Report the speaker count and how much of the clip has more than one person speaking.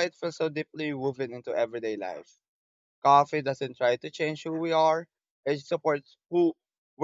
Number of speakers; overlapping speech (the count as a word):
one, no overlap